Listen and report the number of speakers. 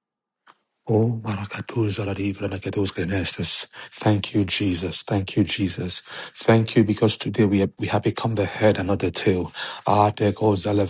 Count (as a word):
one